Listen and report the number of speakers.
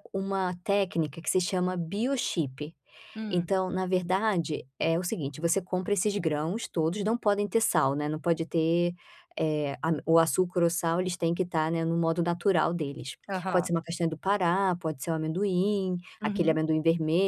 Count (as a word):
two